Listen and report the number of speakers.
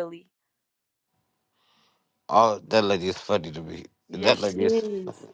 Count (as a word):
two